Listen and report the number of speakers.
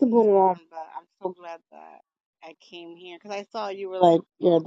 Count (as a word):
one